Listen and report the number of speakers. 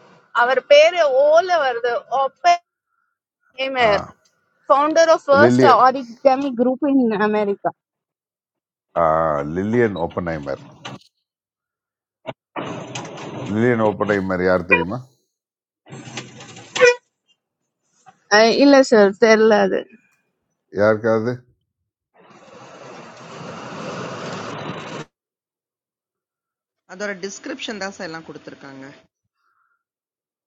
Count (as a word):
three